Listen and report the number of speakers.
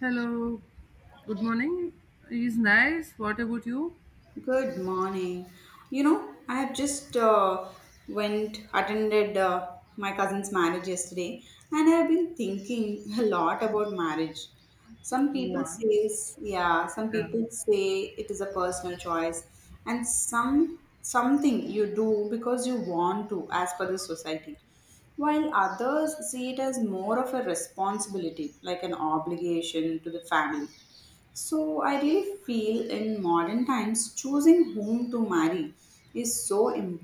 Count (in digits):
2